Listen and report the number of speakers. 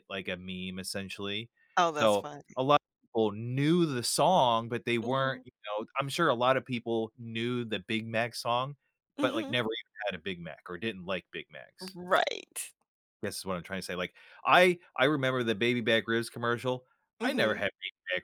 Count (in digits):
2